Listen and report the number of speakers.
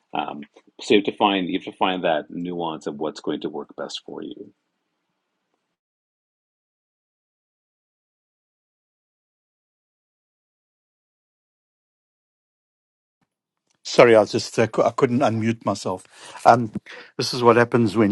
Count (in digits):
2